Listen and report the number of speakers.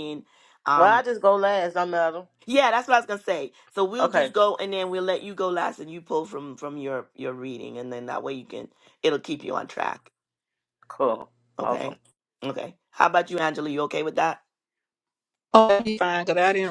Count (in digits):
3